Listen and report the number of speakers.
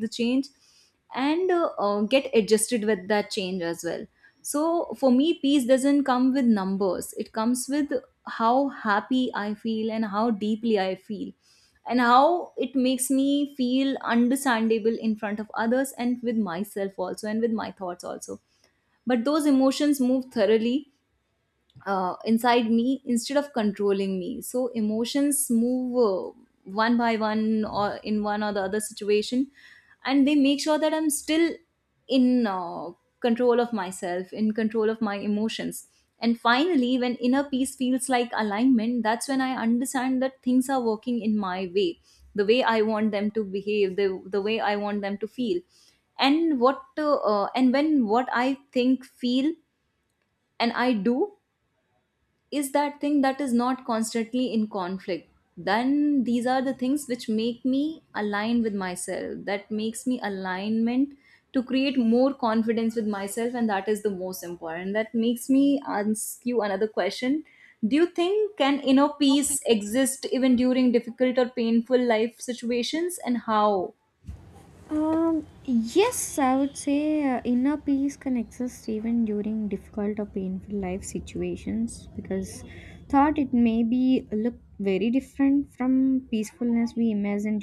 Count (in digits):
2